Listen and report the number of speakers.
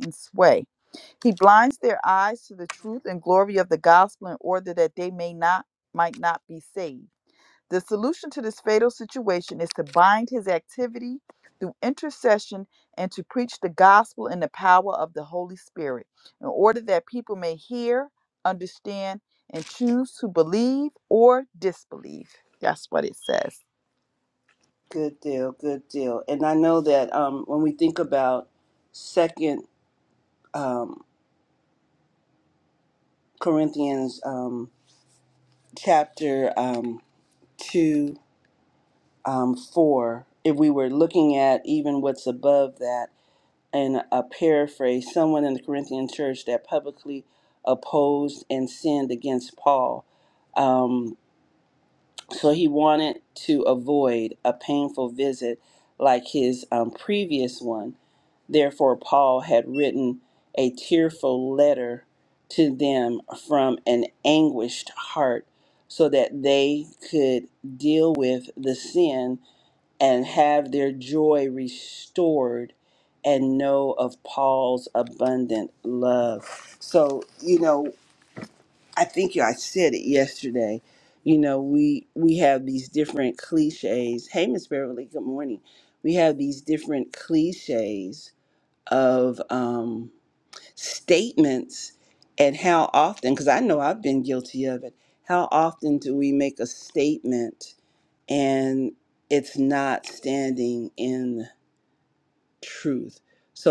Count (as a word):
two